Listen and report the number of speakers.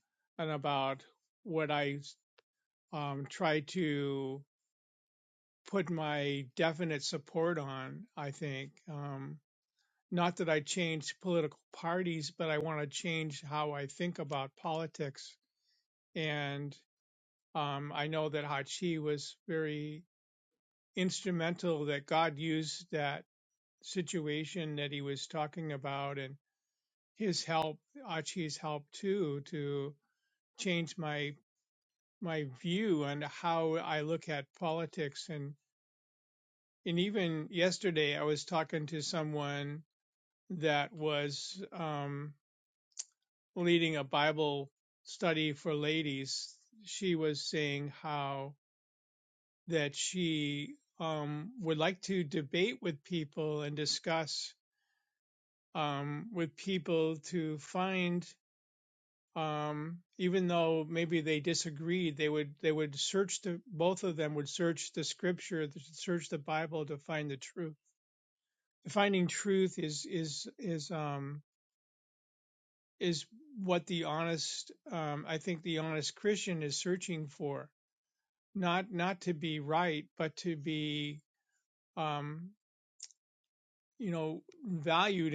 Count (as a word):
one